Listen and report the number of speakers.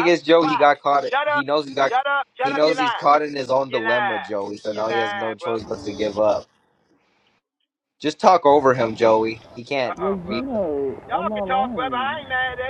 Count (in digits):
3